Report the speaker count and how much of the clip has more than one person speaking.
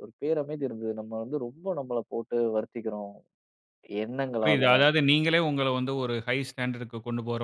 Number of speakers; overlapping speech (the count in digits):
2, about 4%